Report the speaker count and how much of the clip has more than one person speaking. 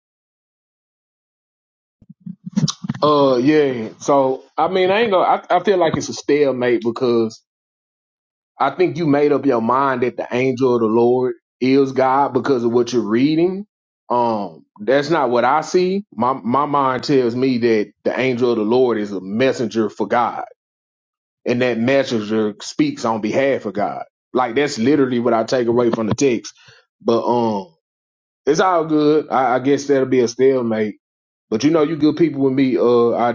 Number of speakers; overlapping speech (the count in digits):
1, no overlap